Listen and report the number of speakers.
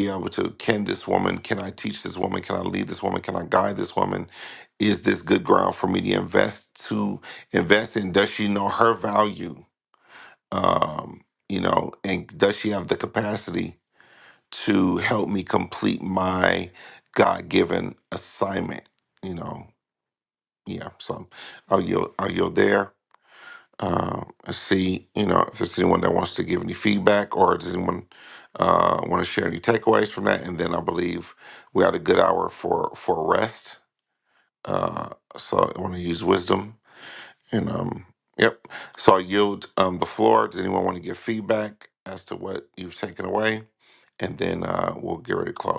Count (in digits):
1